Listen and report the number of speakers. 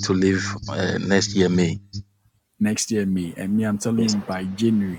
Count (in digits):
2